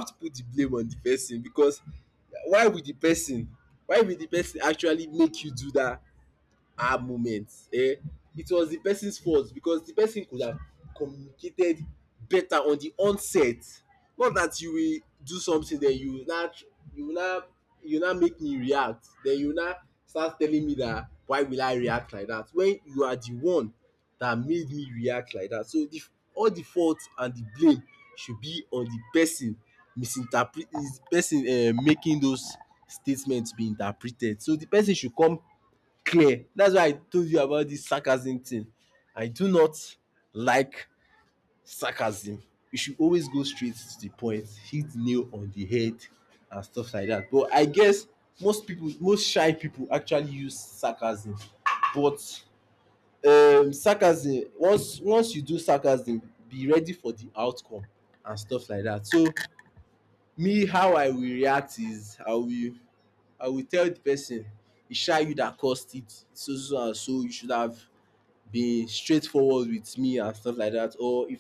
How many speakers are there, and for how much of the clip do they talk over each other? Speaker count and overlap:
one, no overlap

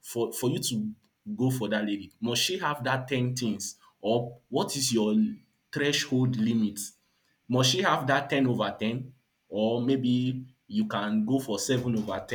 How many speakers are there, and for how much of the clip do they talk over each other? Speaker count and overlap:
one, no overlap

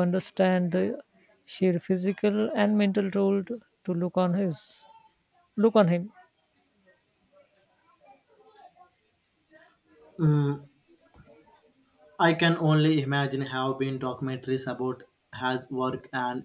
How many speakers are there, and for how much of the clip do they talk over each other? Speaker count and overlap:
two, no overlap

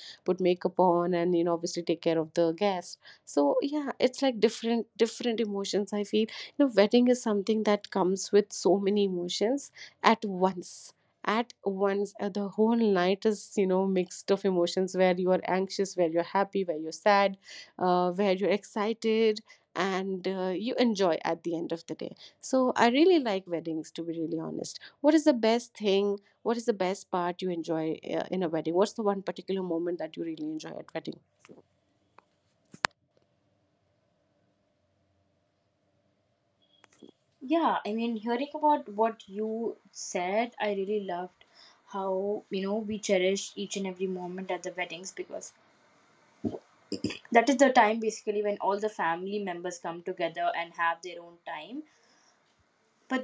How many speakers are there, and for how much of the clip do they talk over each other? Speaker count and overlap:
two, no overlap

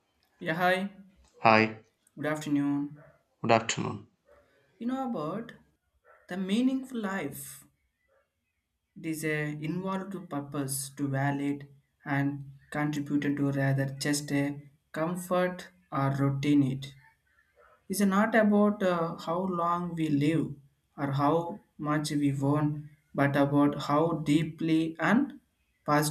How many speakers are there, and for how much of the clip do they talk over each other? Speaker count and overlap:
two, no overlap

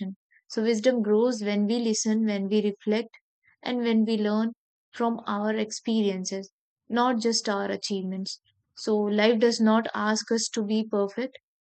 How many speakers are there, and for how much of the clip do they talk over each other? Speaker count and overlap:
one, no overlap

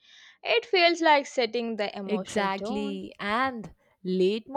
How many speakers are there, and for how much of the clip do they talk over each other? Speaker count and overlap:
two, about 20%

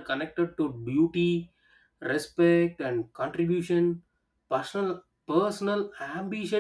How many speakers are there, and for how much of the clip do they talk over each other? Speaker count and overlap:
one, no overlap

